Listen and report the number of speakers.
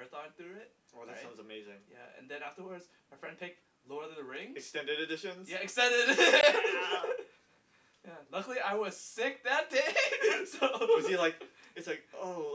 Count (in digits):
2